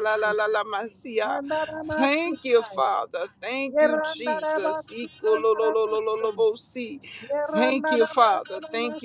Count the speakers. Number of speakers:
2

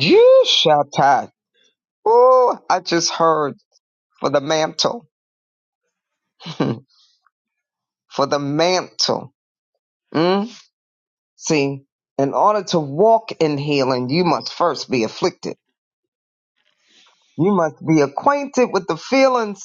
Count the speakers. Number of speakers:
1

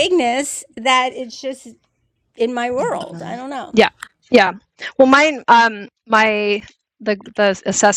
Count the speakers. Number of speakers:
2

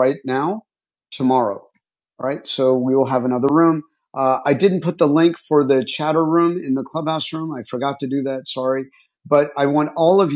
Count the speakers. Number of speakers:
1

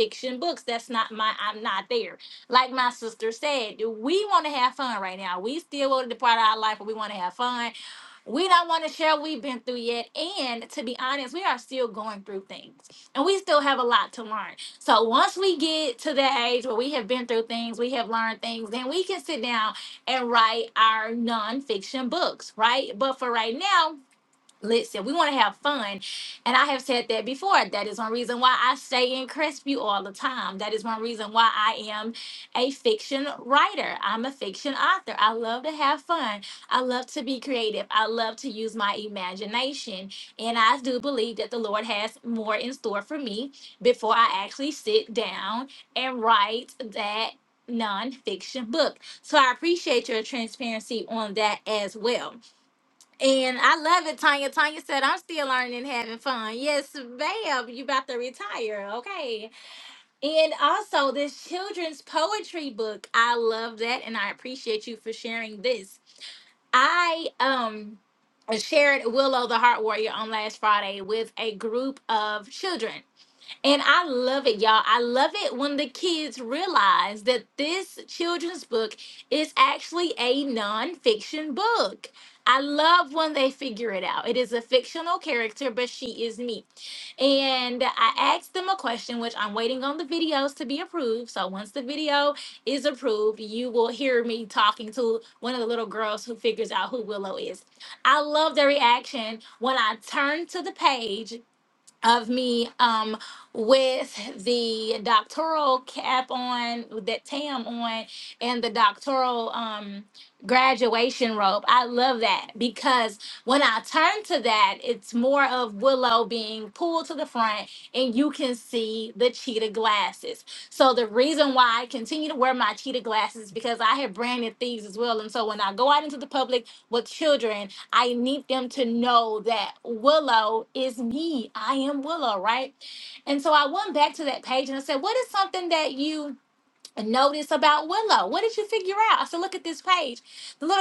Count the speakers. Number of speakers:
1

